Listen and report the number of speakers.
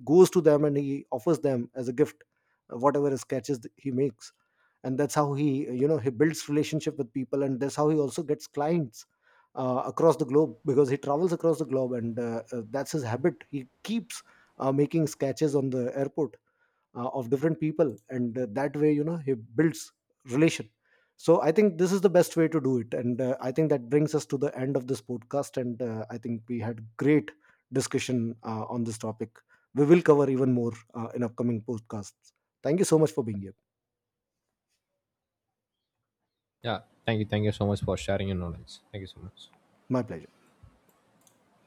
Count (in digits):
2